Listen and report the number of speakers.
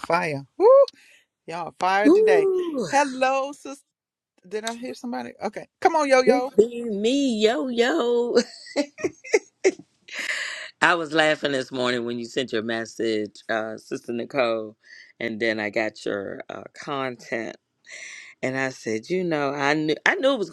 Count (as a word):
two